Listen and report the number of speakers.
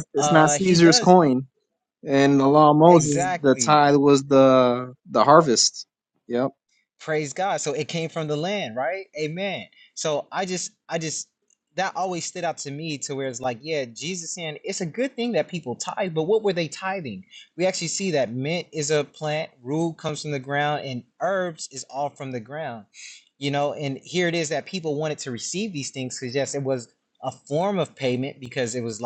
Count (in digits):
2